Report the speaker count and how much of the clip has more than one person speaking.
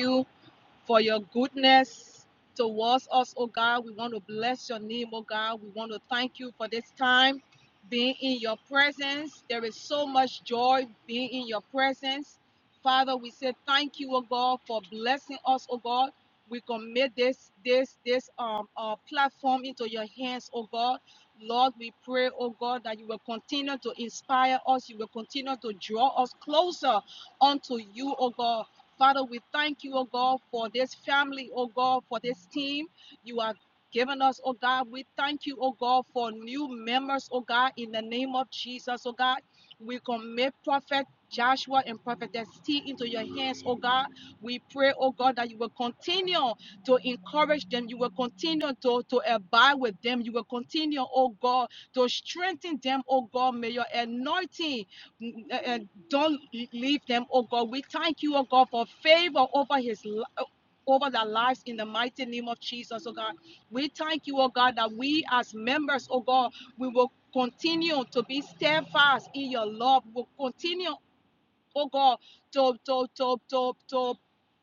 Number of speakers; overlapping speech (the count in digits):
1, no overlap